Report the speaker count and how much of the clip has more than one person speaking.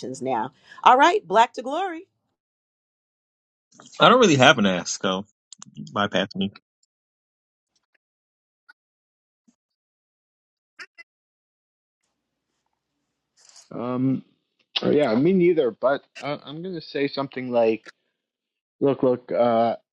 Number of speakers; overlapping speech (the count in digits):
3, no overlap